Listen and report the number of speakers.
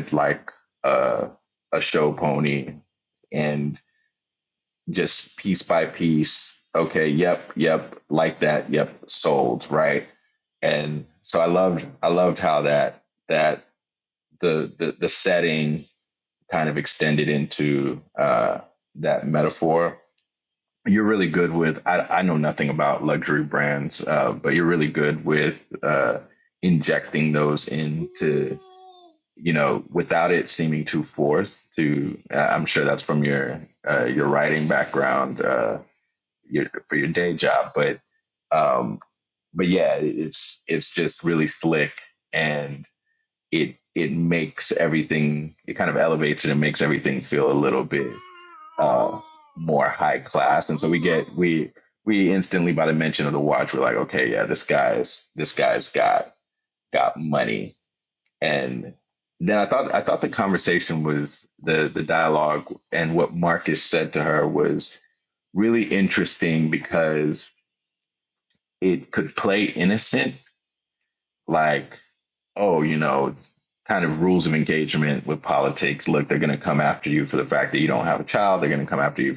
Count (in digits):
1